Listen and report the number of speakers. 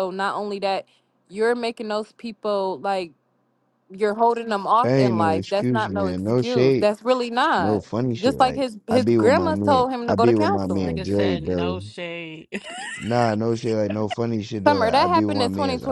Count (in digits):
3